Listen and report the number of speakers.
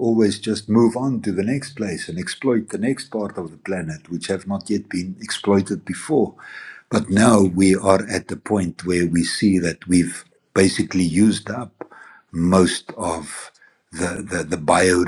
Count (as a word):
one